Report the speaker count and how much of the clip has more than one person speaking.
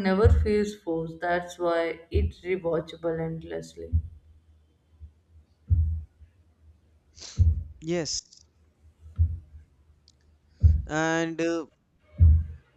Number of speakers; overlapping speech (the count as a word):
two, no overlap